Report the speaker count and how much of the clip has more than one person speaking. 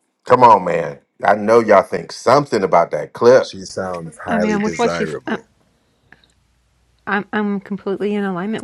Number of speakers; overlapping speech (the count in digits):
3, about 14%